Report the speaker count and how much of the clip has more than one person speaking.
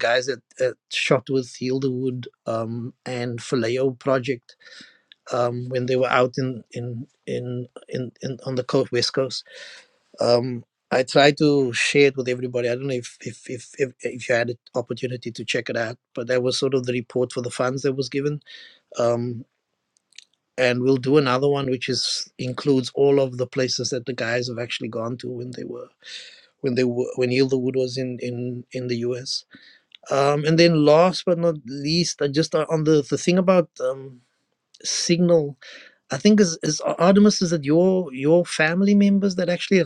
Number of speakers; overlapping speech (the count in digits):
1, no overlap